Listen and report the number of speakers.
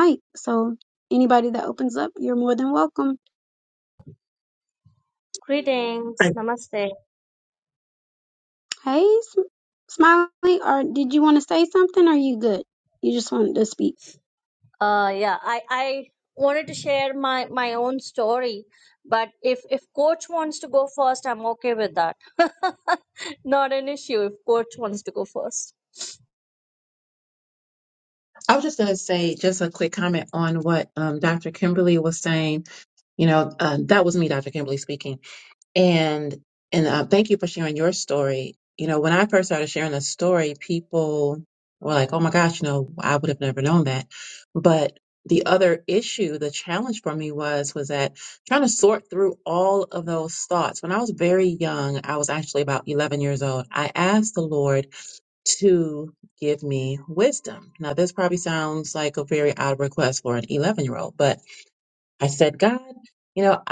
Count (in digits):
3